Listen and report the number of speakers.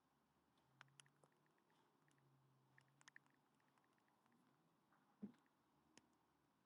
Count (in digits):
0